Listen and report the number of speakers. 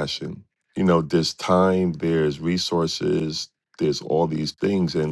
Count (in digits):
1